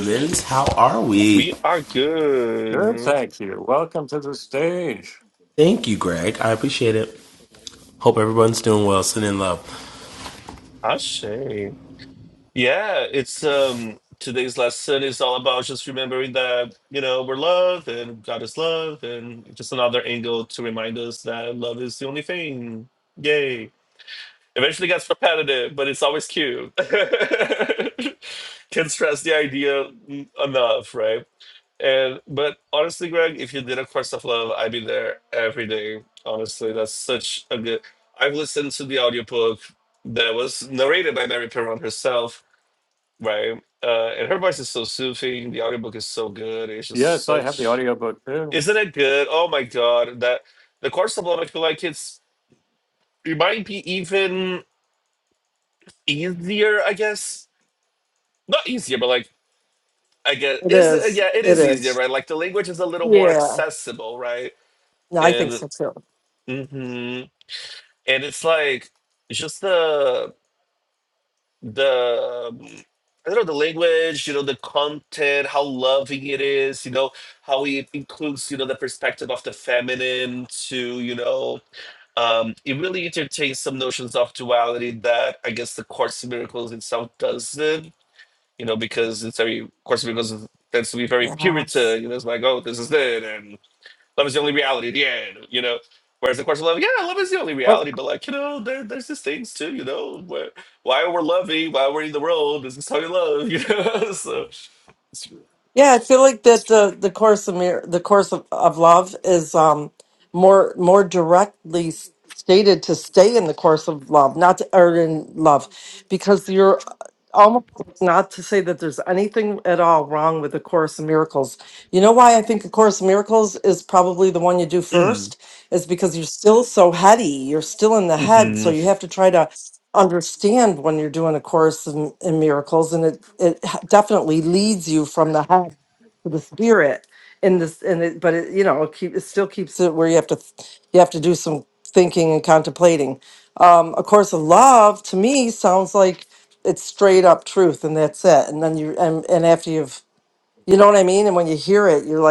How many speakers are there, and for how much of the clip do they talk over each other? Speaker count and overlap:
four, about 3%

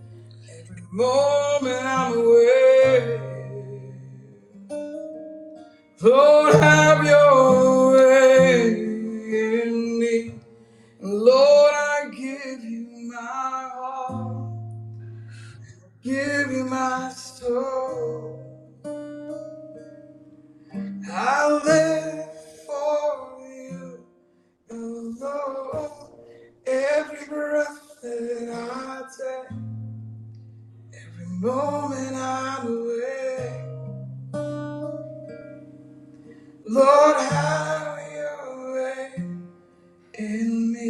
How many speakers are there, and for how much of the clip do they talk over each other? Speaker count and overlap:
one, no overlap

